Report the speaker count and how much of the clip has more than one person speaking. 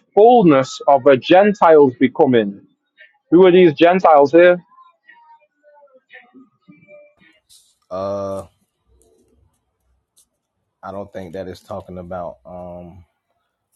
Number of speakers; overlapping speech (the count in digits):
2, no overlap